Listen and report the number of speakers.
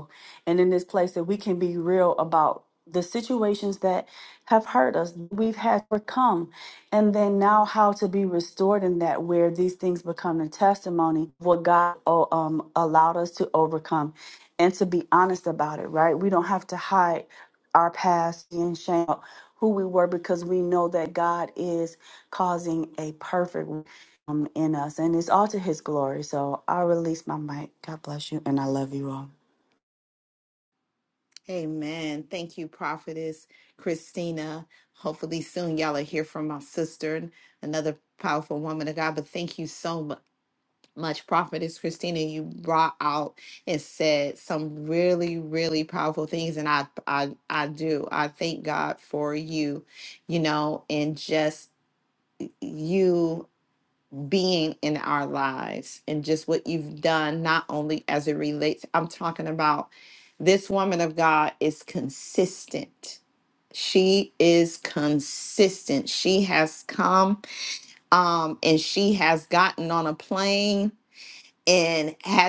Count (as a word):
two